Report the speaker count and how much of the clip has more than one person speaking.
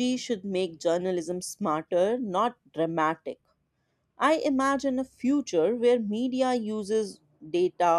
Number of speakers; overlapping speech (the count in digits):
1, no overlap